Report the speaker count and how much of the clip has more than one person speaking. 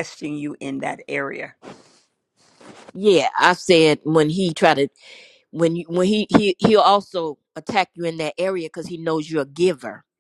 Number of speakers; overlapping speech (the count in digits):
2, no overlap